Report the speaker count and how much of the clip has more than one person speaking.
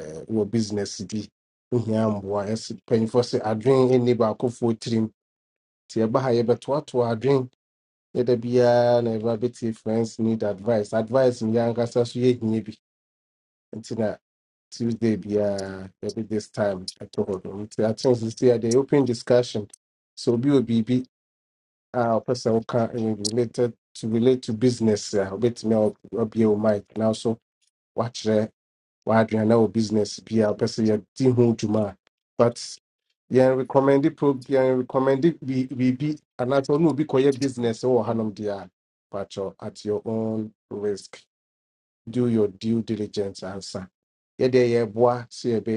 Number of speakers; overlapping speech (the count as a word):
one, no overlap